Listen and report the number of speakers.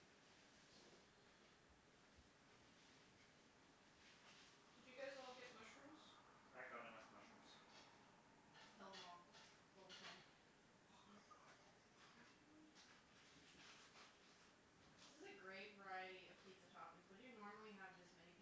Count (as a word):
three